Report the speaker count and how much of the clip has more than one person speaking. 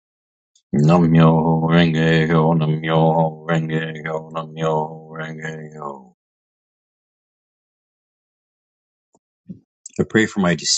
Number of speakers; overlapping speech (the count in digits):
1, no overlap